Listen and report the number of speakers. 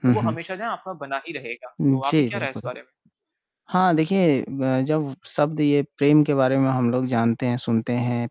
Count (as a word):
two